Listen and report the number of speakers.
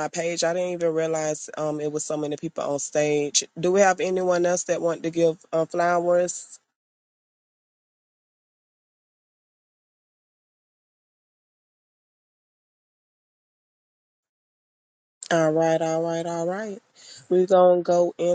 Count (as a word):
one